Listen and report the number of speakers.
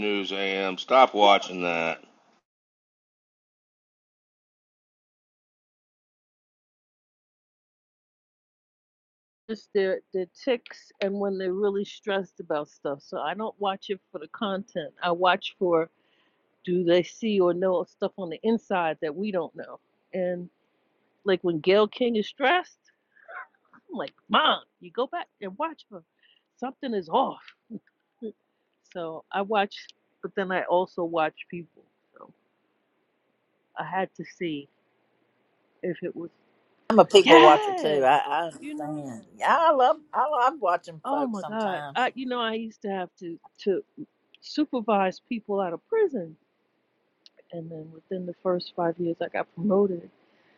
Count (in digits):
3